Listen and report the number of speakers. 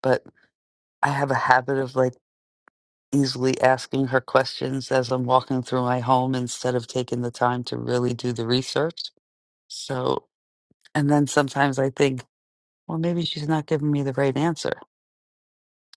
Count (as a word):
one